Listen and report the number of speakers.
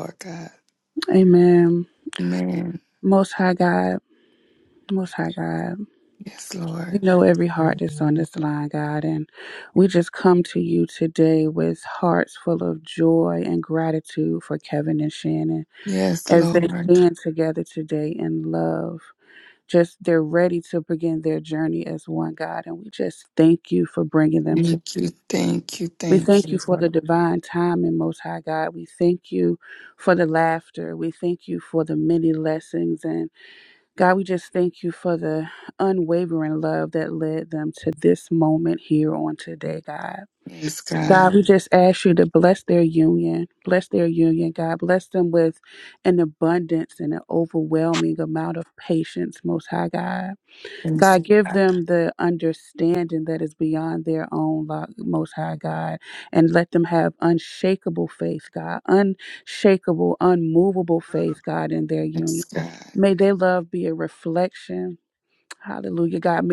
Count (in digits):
2